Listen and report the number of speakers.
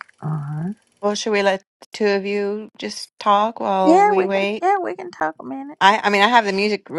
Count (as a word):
two